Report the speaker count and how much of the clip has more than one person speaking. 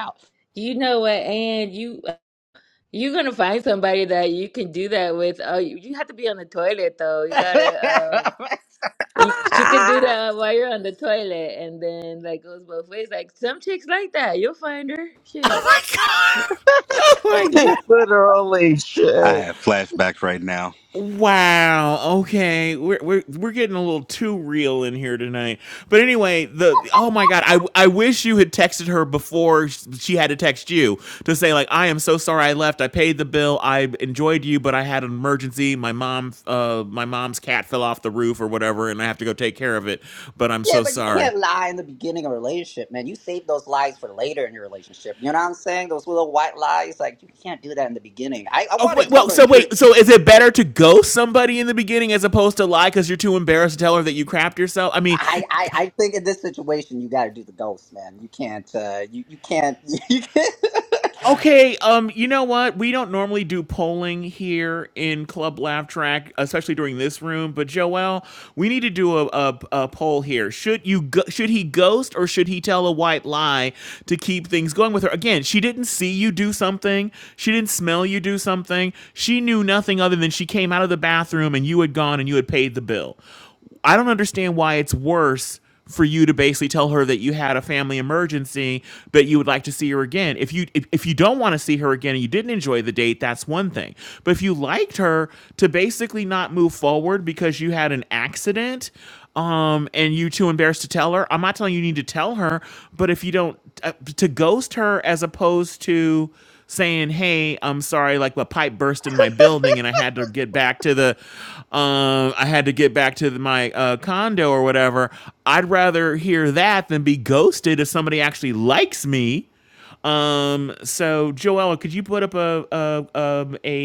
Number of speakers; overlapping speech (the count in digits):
5, about 2%